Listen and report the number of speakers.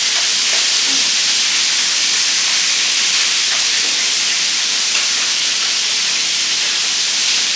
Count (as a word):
zero